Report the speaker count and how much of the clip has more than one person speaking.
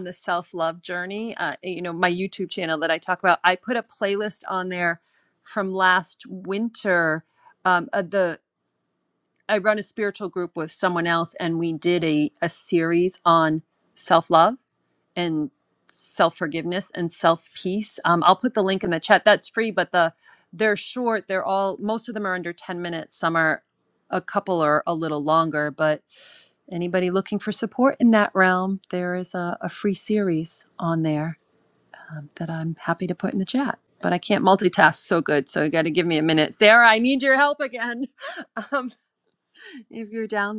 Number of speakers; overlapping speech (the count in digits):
1, no overlap